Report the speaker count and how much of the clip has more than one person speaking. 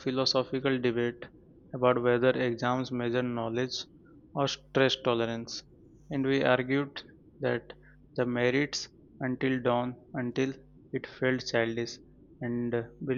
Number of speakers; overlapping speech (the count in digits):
1, no overlap